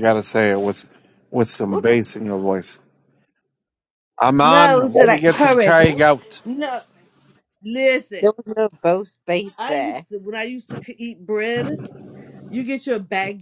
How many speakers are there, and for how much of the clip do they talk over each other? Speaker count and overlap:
three, about 18%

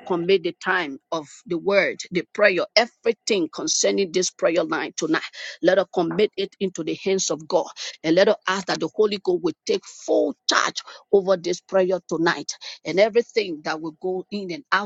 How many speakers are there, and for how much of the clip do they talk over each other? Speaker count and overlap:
one, no overlap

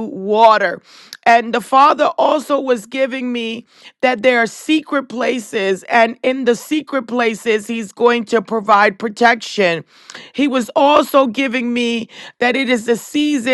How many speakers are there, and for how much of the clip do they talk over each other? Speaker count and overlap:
one, no overlap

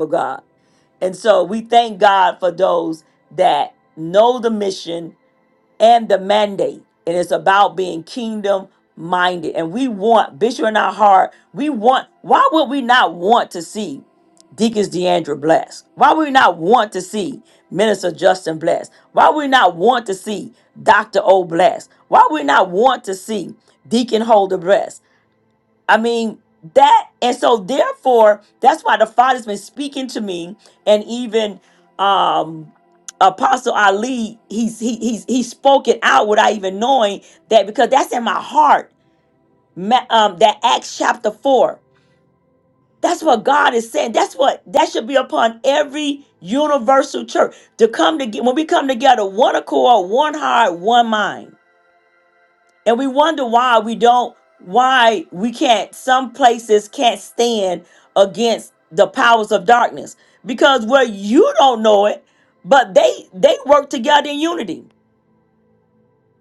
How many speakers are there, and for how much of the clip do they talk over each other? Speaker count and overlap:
one, no overlap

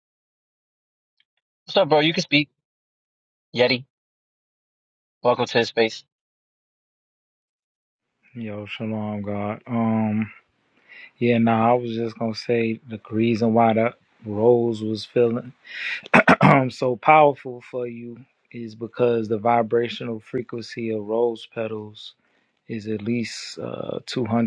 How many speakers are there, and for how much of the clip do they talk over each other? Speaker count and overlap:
two, no overlap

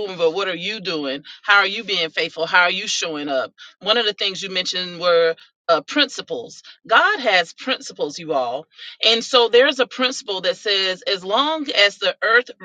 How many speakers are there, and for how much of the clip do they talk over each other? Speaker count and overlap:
one, no overlap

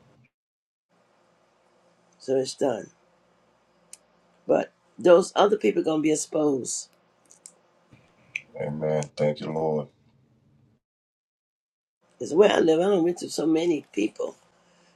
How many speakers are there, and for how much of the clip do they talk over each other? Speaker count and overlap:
two, no overlap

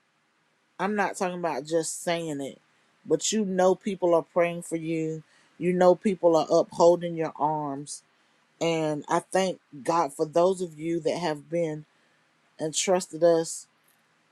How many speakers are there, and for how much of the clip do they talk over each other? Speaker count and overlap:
one, no overlap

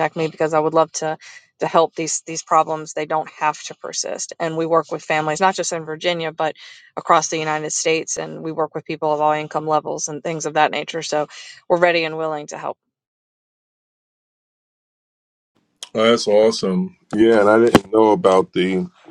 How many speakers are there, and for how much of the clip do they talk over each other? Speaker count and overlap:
two, no overlap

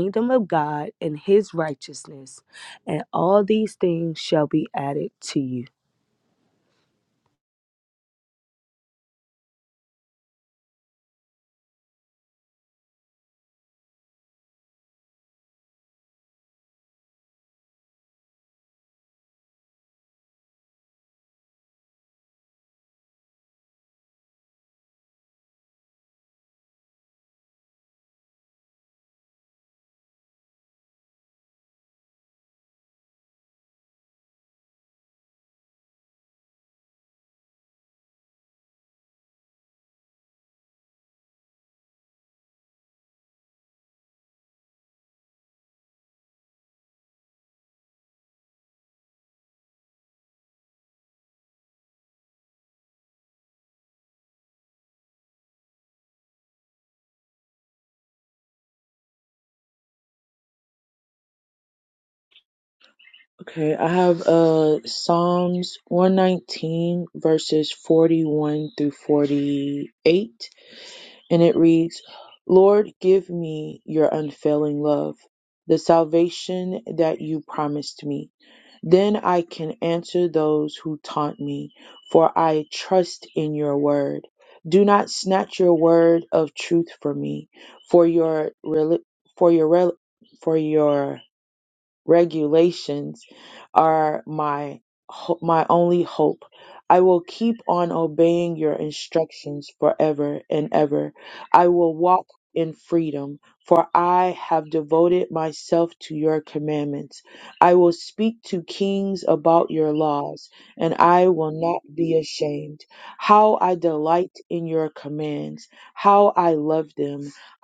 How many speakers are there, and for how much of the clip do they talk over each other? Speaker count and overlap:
two, no overlap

